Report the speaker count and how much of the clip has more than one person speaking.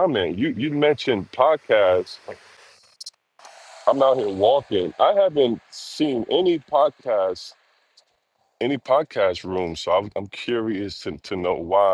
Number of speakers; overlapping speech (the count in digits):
1, no overlap